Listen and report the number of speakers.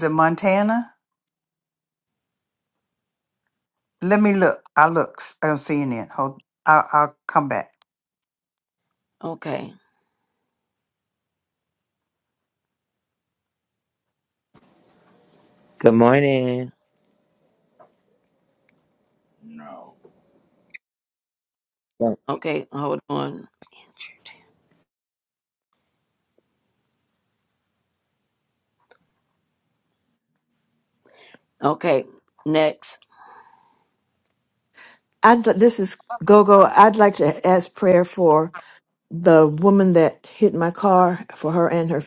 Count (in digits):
4